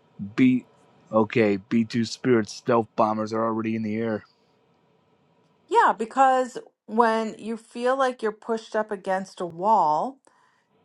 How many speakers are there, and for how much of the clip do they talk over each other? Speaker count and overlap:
two, no overlap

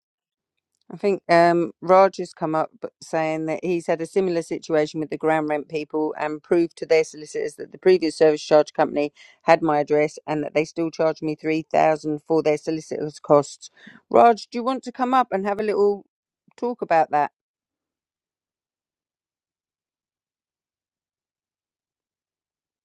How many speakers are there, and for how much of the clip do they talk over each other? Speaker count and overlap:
one, no overlap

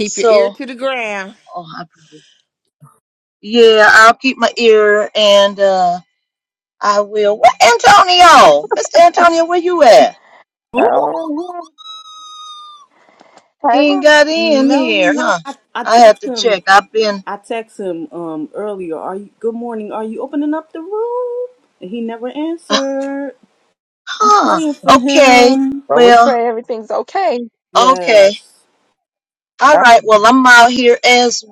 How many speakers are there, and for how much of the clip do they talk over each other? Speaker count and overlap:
four, about 16%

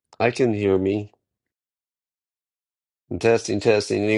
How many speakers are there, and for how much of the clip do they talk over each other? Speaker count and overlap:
one, no overlap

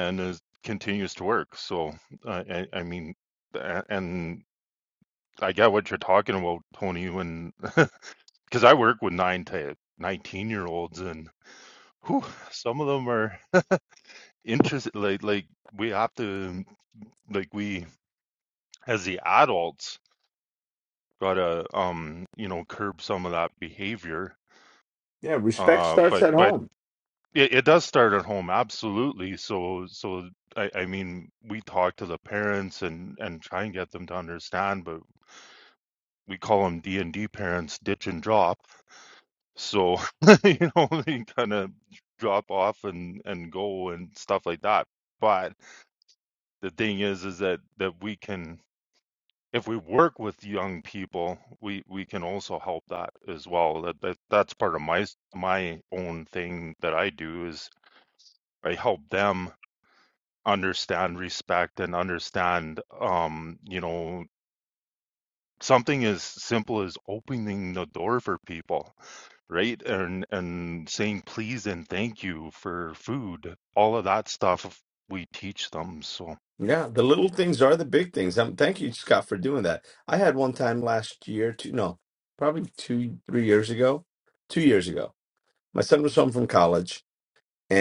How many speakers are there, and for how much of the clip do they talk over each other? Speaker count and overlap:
two, about 1%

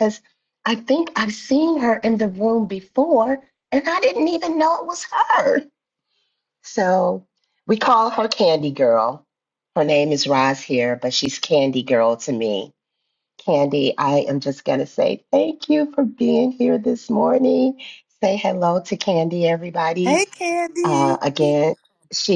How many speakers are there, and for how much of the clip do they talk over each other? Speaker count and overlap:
two, about 2%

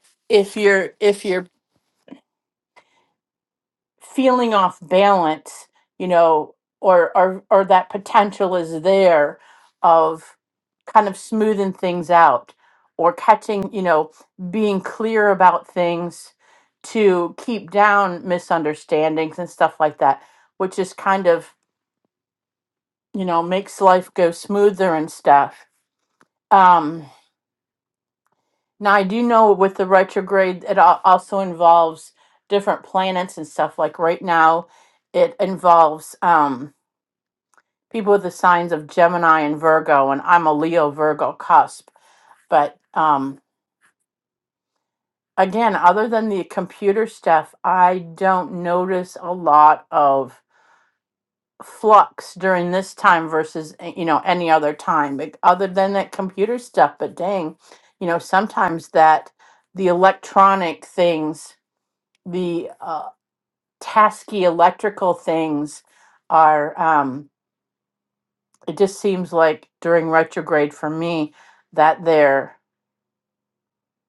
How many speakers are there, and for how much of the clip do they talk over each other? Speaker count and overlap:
one, no overlap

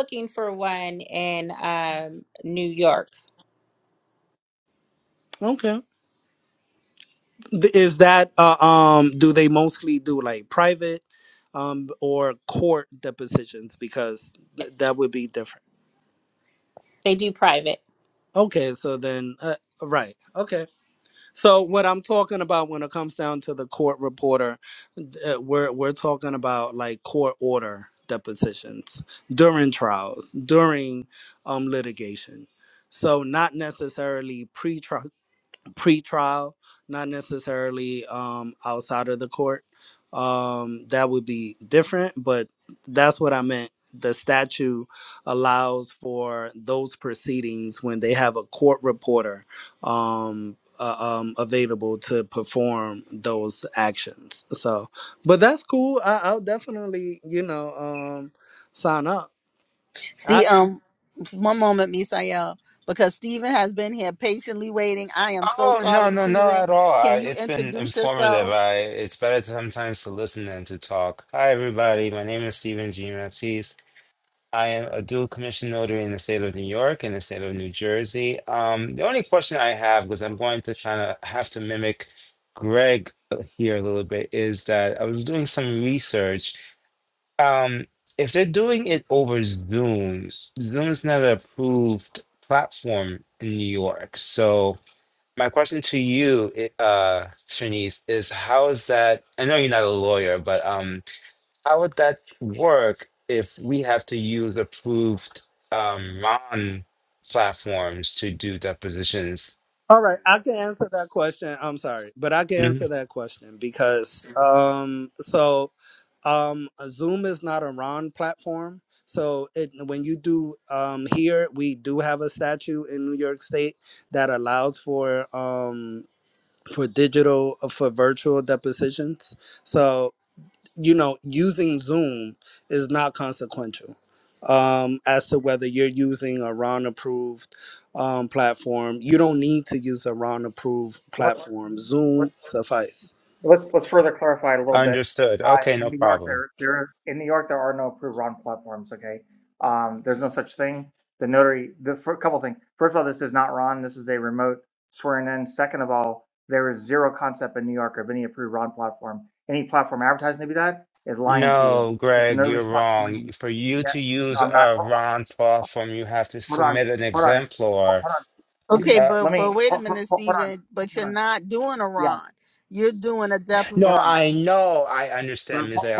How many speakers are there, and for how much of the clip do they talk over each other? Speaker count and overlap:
five, about 6%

